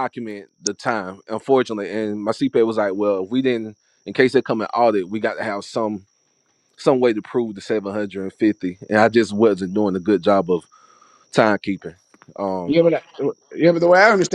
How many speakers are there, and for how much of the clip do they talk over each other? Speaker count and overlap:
2, under 1%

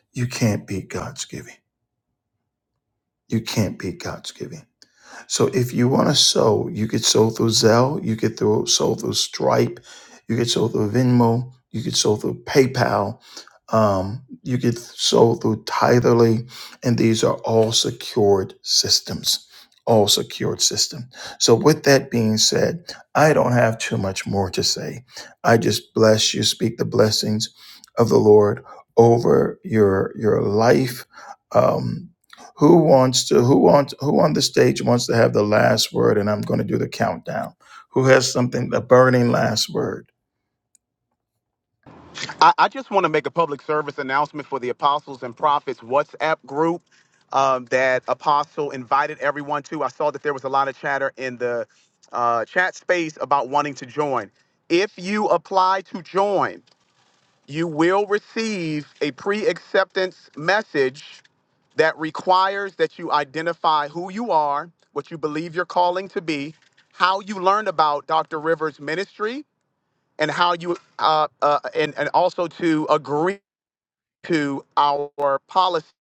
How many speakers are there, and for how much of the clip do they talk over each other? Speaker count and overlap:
2, no overlap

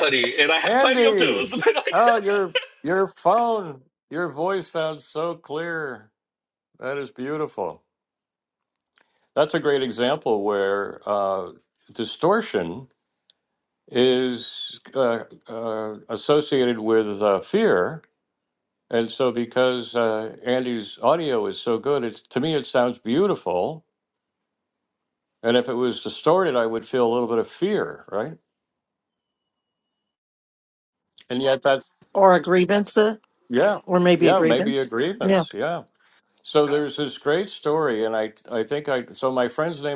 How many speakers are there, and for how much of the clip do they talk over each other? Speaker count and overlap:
3, about 4%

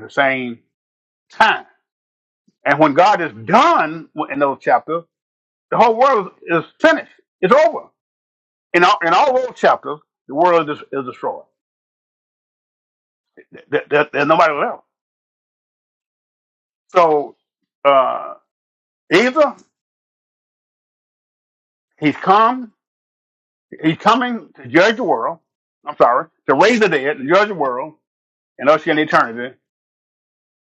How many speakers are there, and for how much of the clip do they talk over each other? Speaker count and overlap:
1, no overlap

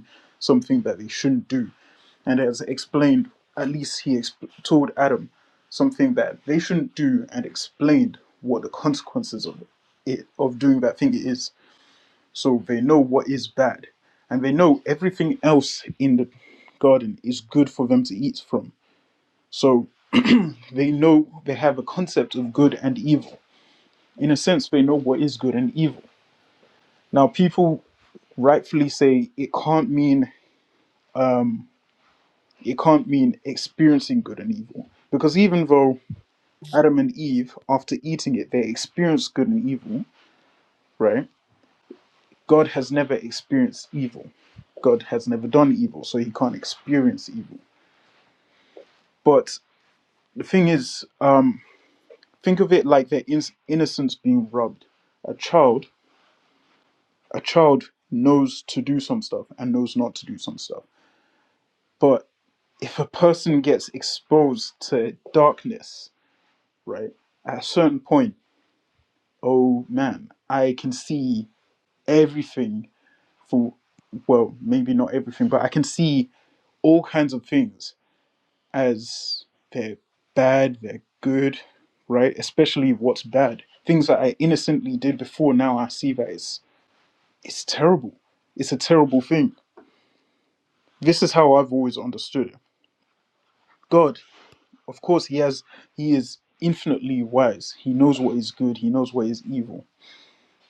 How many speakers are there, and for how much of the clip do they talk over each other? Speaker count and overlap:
1, no overlap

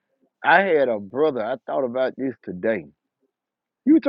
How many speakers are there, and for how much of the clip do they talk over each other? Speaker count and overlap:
1, no overlap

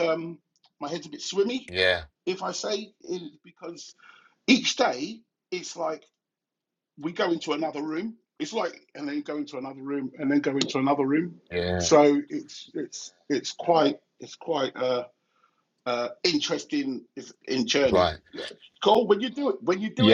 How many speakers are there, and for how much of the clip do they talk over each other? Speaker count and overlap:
2, about 3%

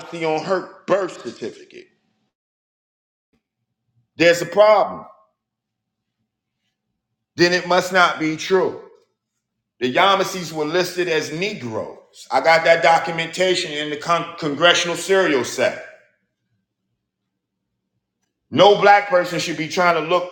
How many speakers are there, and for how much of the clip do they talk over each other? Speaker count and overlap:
1, no overlap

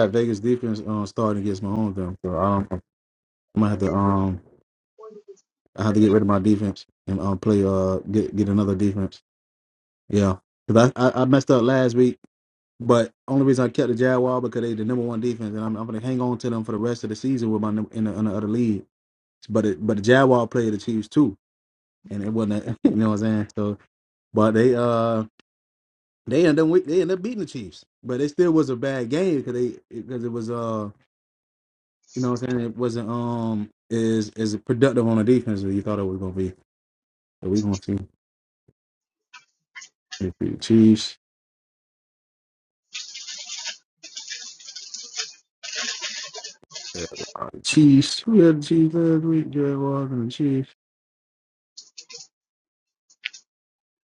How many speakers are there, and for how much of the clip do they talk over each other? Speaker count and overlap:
1, no overlap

